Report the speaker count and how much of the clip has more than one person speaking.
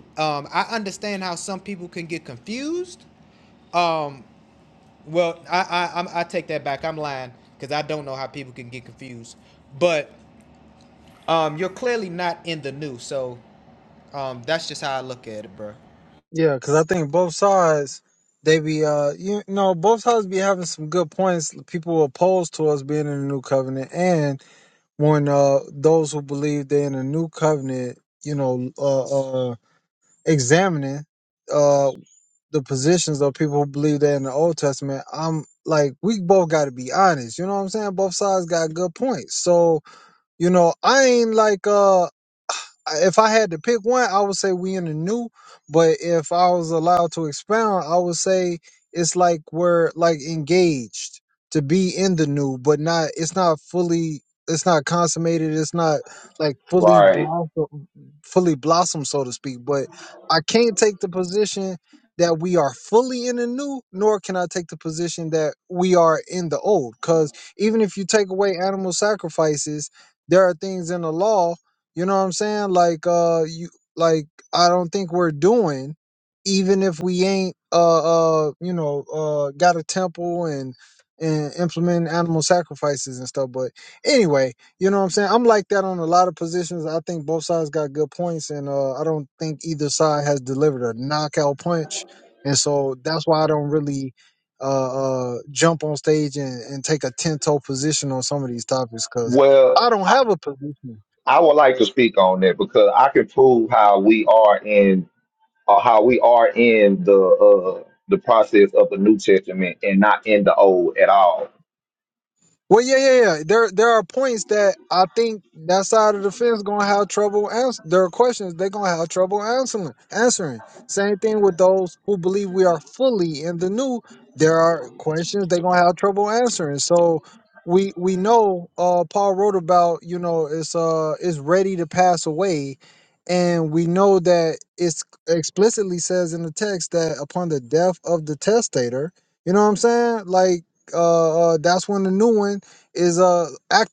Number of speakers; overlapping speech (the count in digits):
3, about 1%